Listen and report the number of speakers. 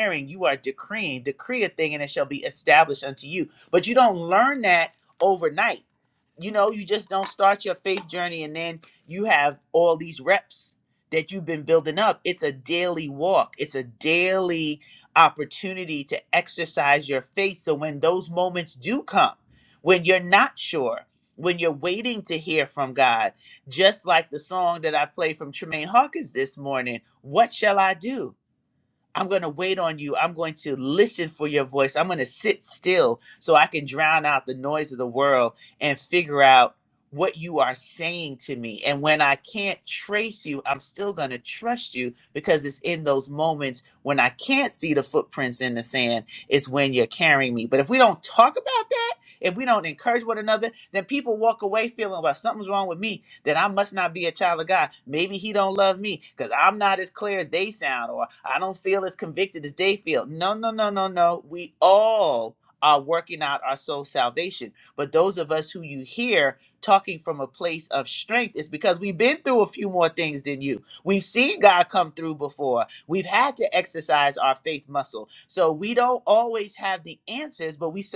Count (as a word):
one